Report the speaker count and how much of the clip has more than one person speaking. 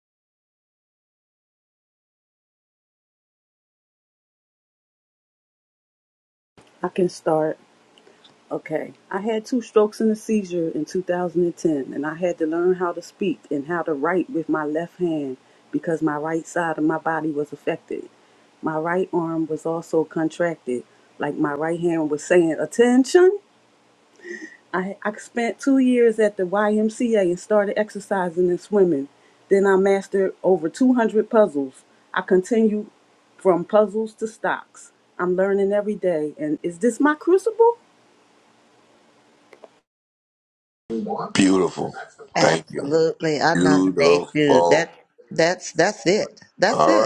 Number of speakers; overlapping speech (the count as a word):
three, about 4%